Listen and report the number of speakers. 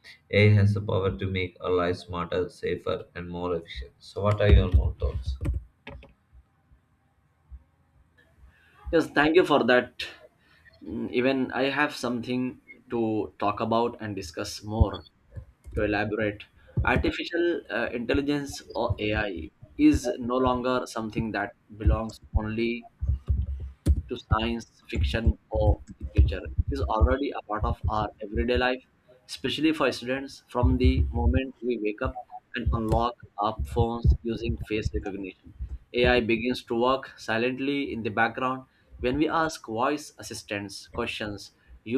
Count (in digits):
2